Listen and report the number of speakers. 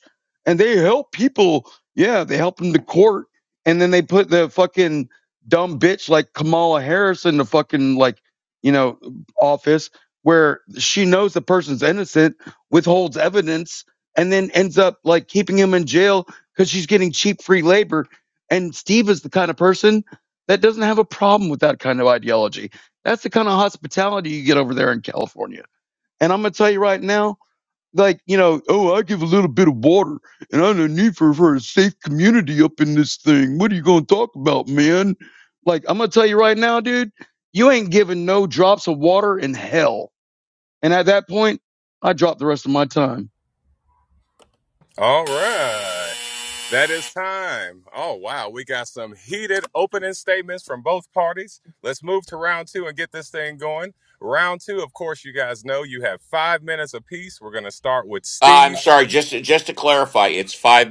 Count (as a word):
three